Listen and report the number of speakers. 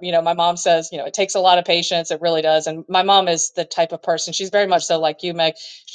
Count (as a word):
one